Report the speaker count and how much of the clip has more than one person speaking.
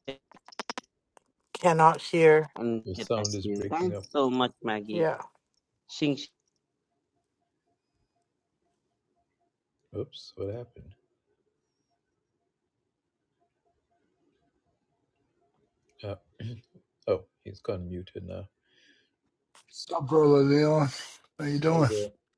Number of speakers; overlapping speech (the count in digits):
4, about 4%